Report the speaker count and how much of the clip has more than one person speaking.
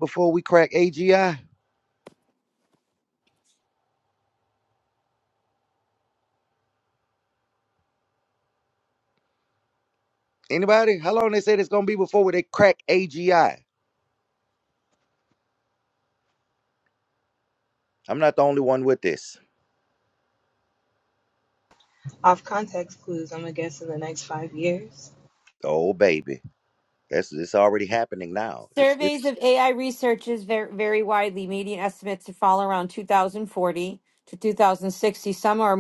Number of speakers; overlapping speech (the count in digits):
3, about 1%